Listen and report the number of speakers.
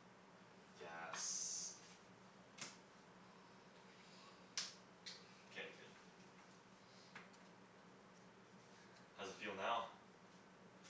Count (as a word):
one